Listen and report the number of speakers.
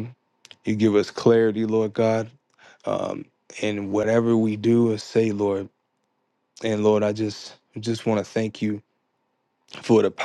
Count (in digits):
1